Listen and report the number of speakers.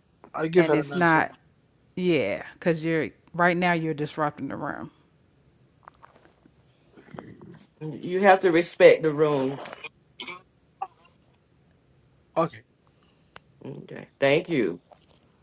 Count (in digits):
3